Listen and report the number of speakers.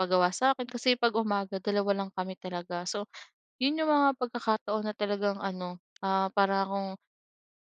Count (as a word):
one